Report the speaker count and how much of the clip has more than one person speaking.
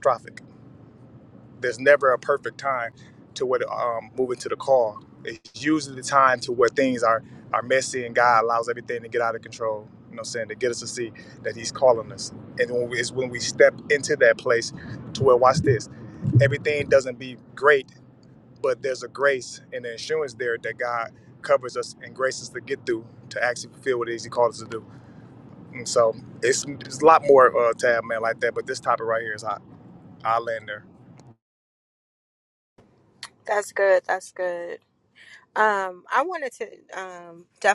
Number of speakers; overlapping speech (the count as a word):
two, no overlap